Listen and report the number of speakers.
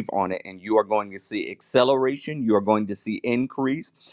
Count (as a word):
one